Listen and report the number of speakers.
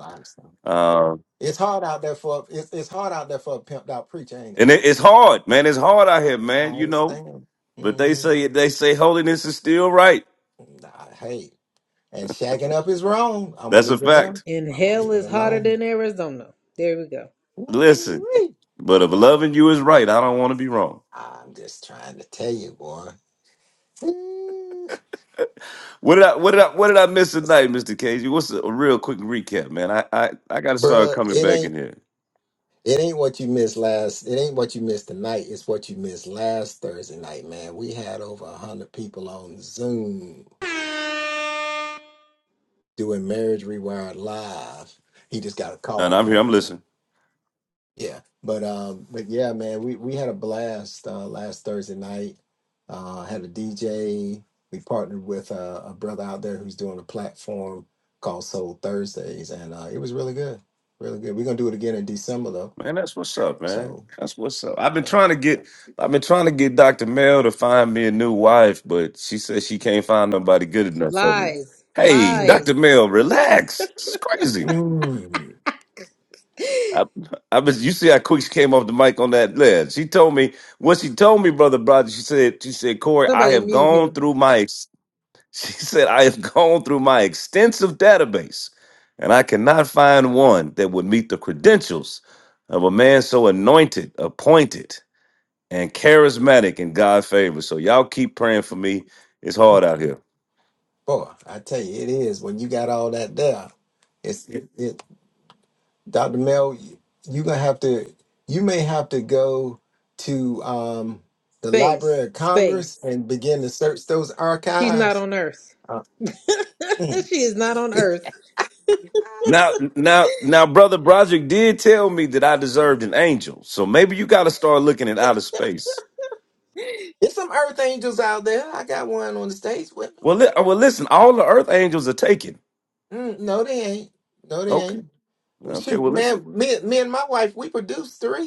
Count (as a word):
three